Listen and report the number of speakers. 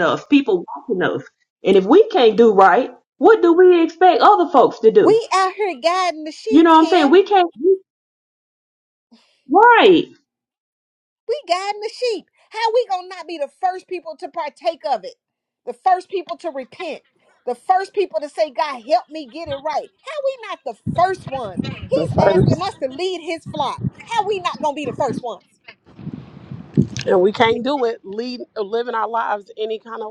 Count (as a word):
three